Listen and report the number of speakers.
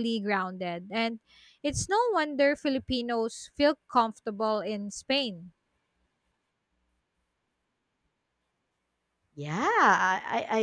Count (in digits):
2